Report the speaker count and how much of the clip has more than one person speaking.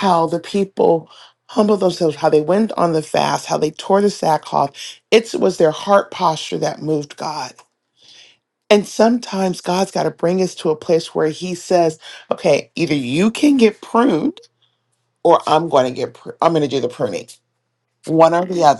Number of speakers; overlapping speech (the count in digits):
1, no overlap